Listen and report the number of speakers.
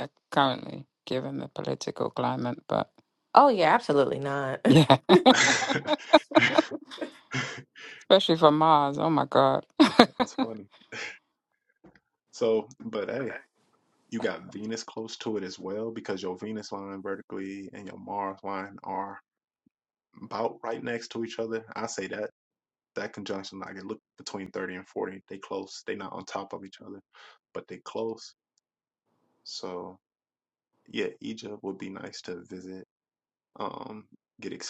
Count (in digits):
3